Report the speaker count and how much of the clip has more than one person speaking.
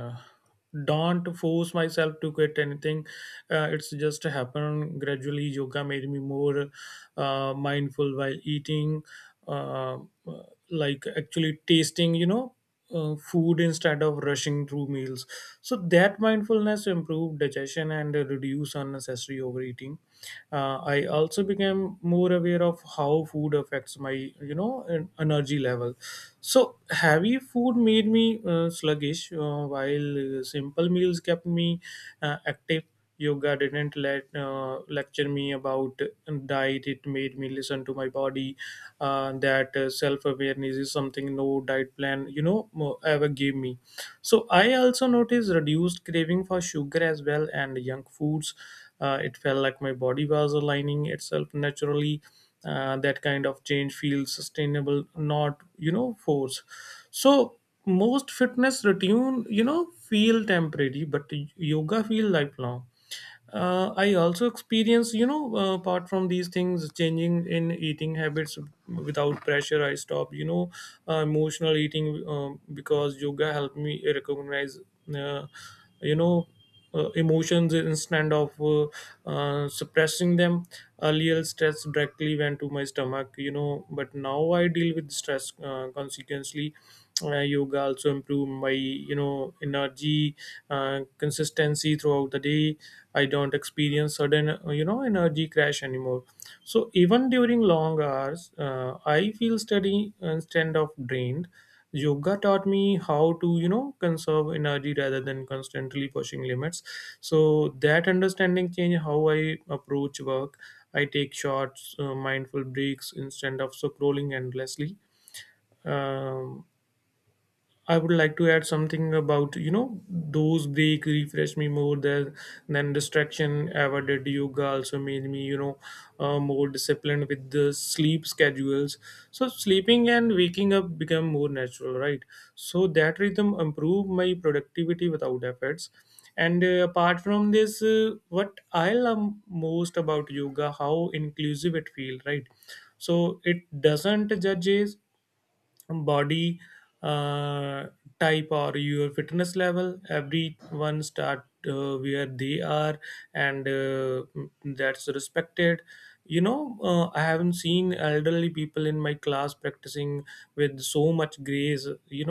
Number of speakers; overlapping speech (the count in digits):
1, no overlap